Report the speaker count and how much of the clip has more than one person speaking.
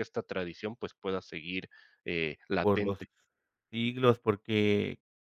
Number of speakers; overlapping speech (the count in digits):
2, about 7%